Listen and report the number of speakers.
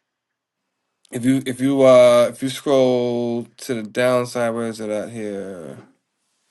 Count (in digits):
1